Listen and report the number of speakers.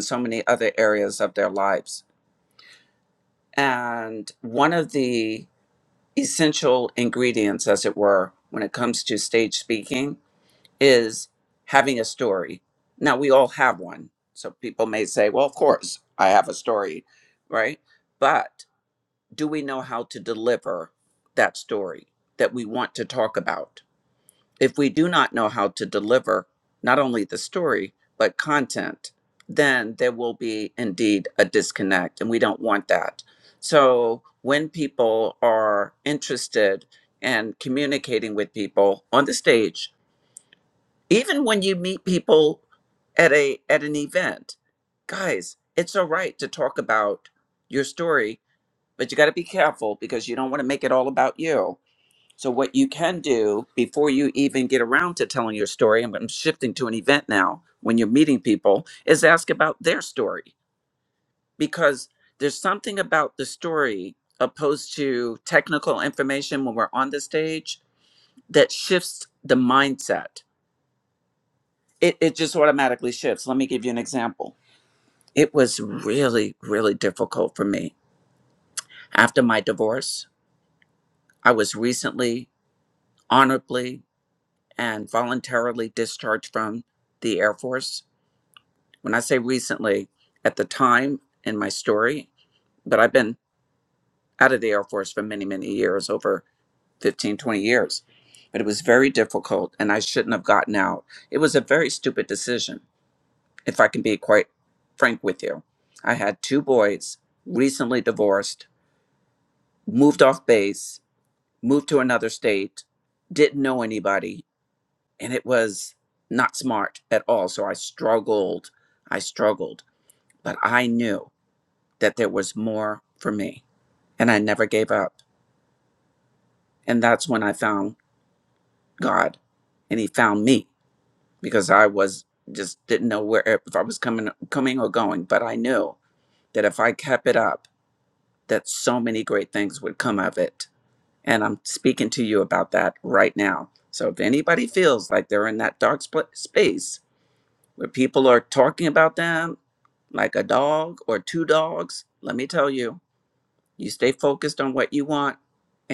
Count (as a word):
one